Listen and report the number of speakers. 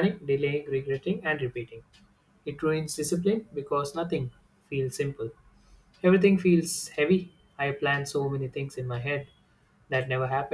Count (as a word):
one